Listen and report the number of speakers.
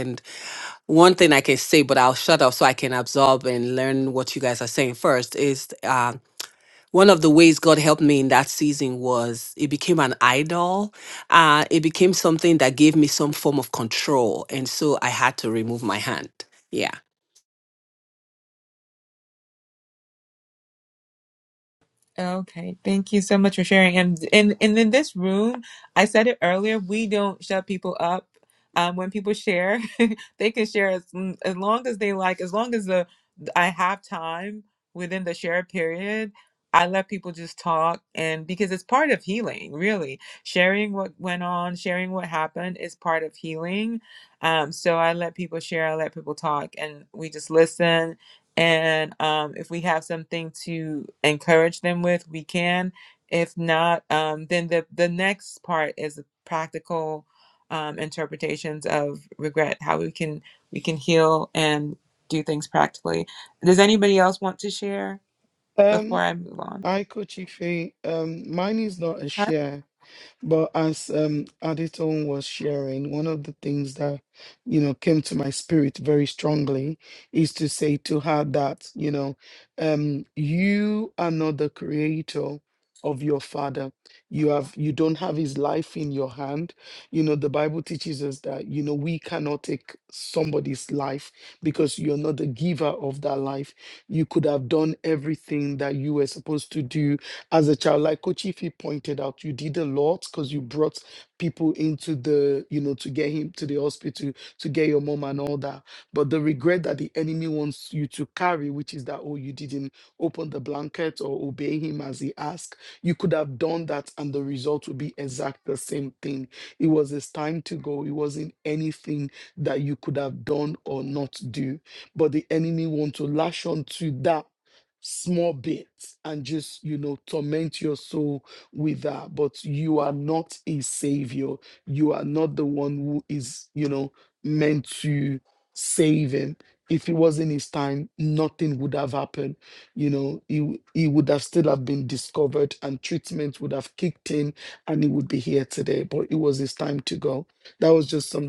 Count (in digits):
3